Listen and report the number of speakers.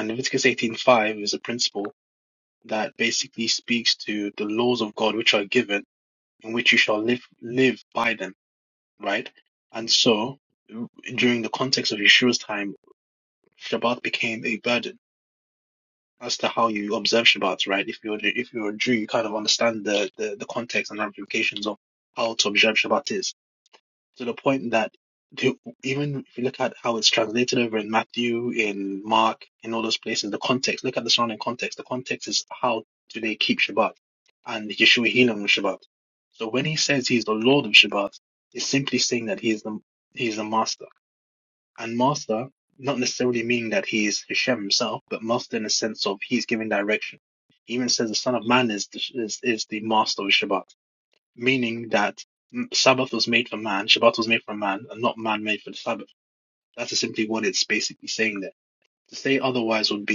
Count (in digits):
1